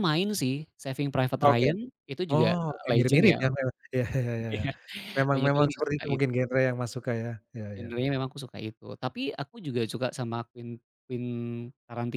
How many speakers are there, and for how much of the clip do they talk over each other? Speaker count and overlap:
2, about 17%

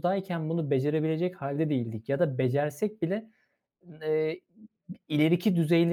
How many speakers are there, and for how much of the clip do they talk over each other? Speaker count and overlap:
1, no overlap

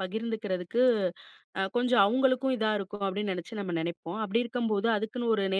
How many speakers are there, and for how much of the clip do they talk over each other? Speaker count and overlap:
1, no overlap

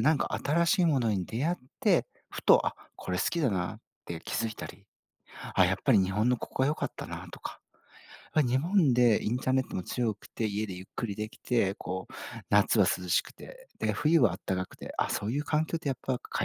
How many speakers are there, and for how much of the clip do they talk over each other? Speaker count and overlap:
1, no overlap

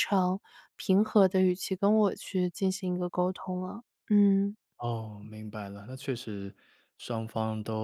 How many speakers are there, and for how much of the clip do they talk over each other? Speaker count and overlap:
2, no overlap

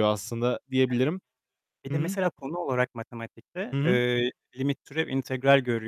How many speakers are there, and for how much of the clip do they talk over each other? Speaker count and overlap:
2, about 16%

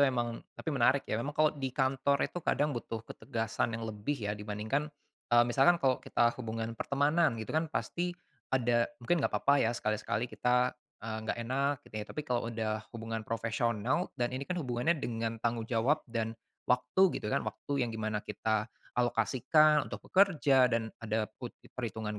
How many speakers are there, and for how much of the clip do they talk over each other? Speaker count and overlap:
1, no overlap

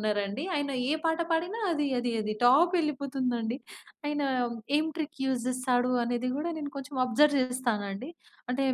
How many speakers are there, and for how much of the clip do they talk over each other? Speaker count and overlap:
1, no overlap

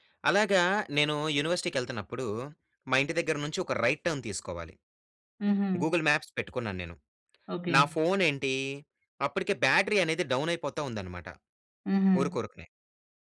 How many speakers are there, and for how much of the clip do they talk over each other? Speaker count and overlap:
2, about 2%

